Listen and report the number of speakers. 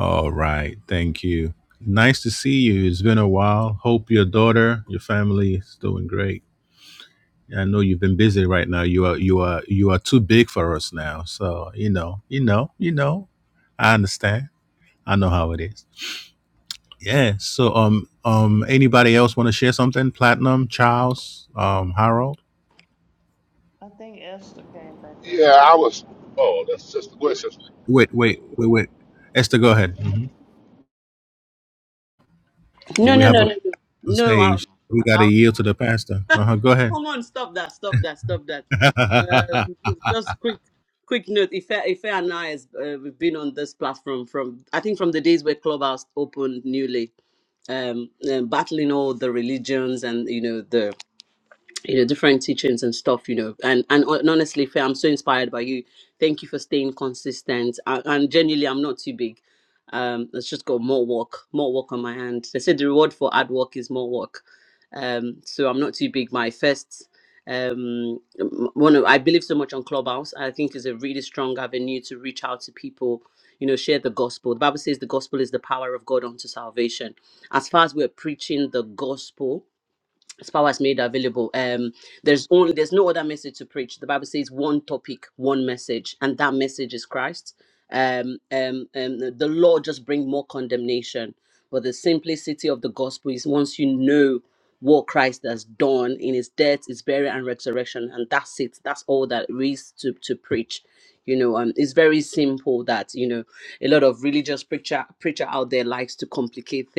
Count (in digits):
4